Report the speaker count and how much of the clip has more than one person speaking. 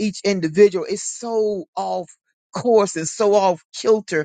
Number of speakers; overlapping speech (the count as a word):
one, no overlap